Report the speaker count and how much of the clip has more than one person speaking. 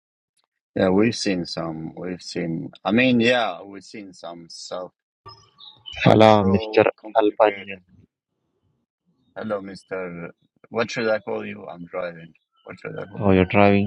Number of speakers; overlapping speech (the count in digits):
2, about 14%